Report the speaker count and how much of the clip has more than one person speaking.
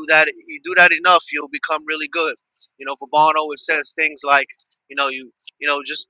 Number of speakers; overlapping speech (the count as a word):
one, no overlap